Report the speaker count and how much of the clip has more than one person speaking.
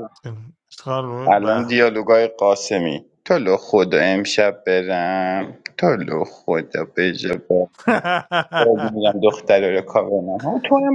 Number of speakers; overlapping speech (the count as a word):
two, about 5%